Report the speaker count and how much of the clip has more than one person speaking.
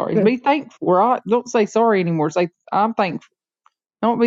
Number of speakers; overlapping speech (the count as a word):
one, no overlap